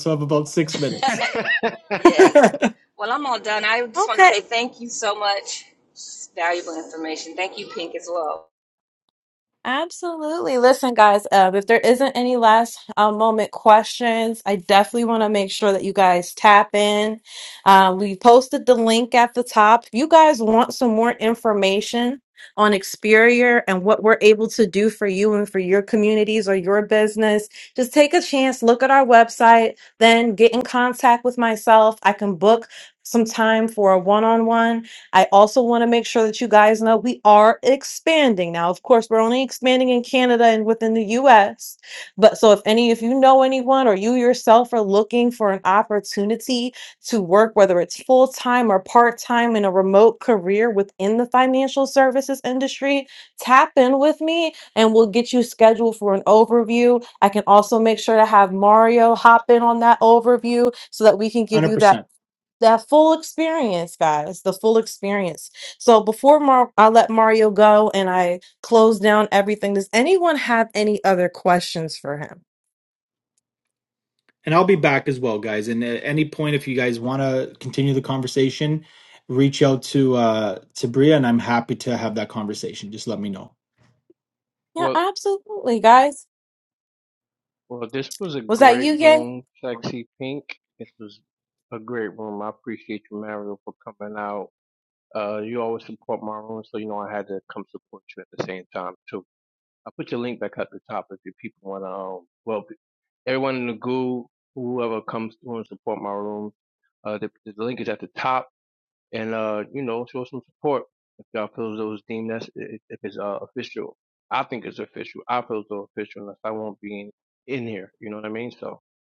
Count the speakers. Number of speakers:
4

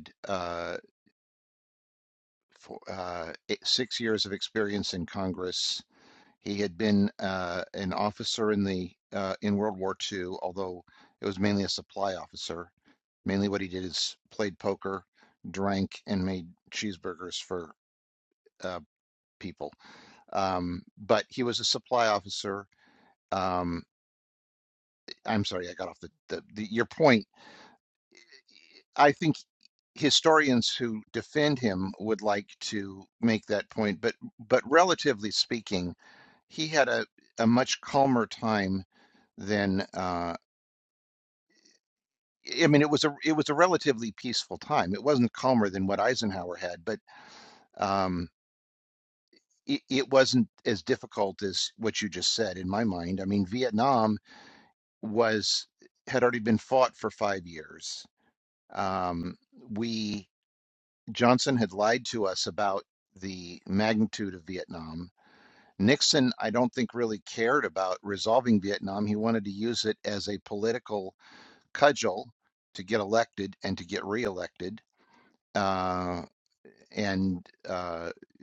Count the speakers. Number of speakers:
1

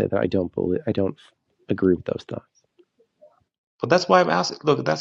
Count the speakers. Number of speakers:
2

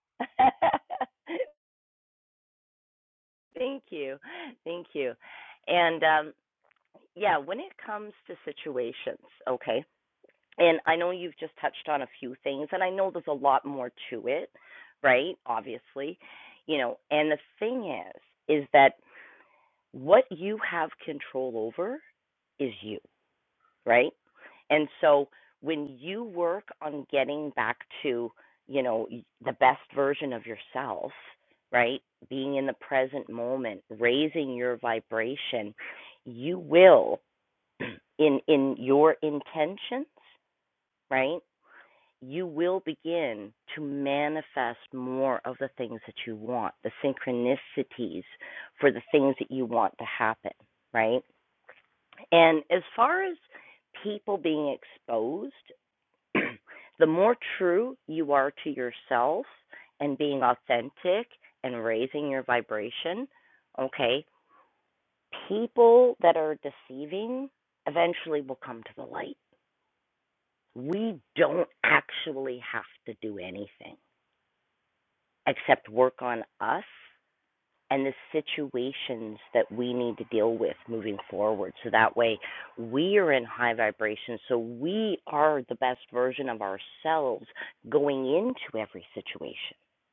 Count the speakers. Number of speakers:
1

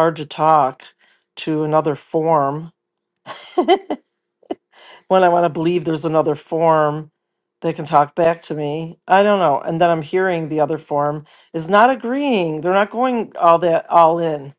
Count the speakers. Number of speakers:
1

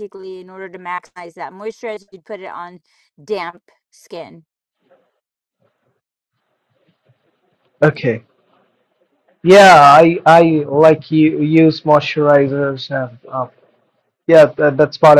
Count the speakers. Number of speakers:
2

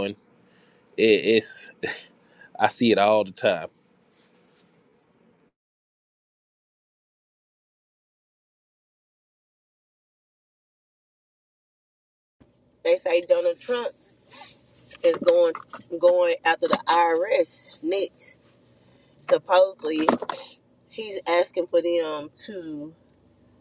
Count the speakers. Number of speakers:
2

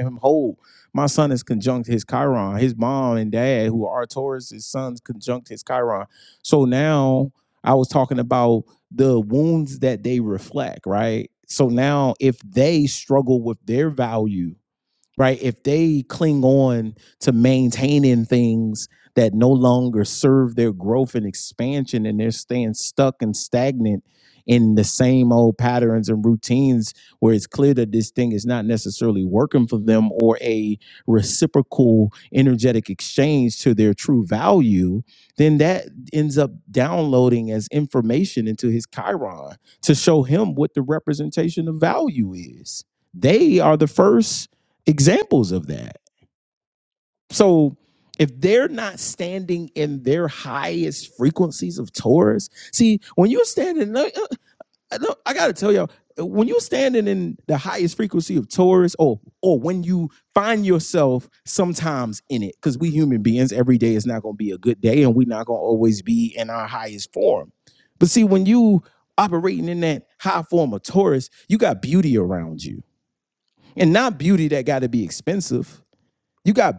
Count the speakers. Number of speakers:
1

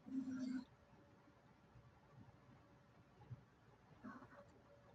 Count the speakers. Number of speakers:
0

